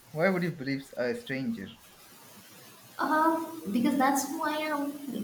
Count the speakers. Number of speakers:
2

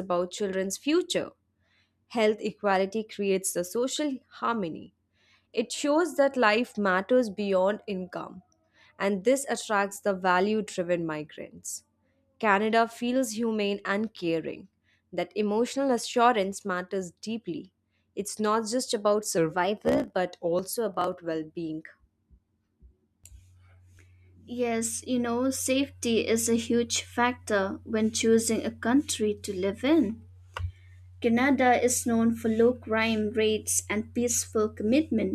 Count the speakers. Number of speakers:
2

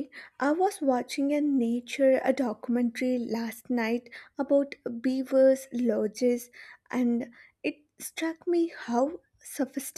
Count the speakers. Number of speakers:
1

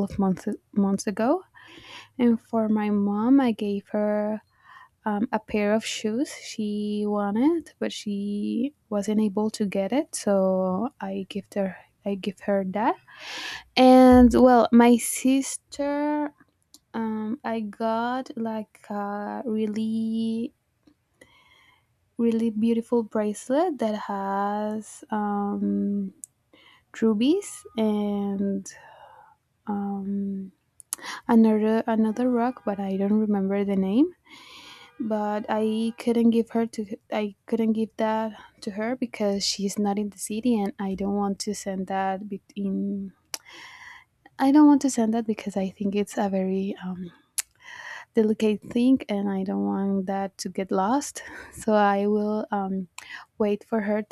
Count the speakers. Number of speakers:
1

